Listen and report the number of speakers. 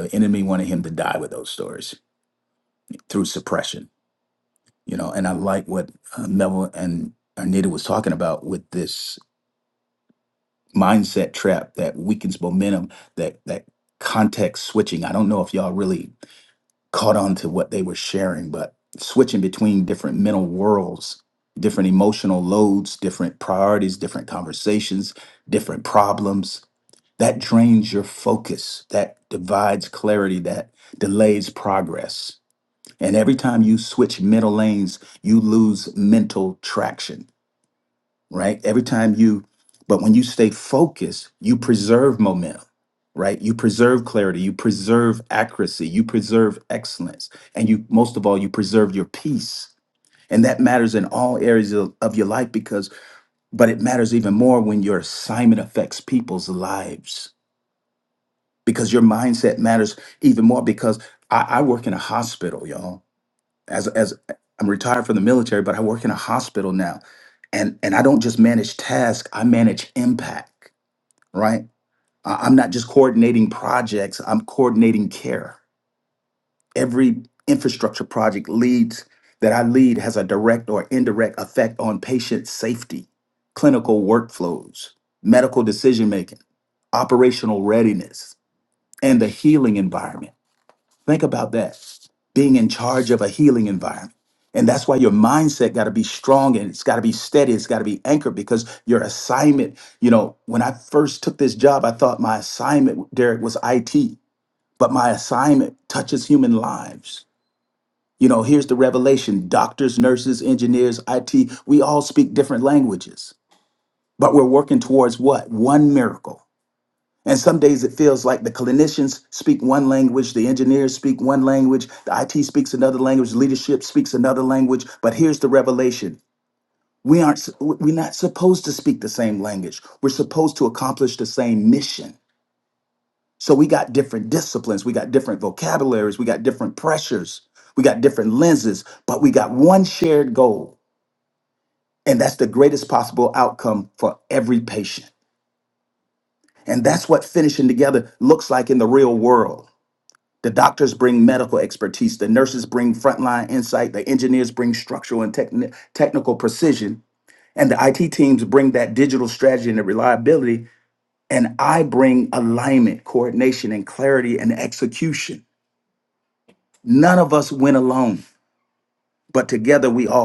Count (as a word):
one